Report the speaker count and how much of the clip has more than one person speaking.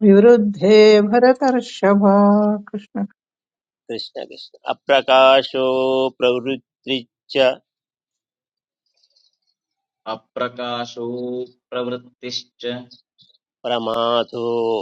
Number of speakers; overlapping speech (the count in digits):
3, no overlap